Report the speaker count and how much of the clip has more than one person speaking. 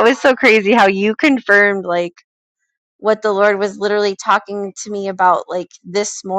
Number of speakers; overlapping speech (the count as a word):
one, no overlap